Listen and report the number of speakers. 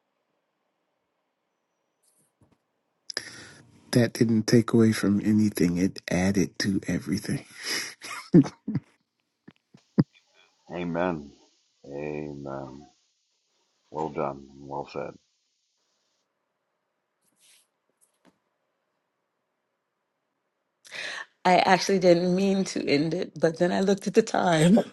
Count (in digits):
3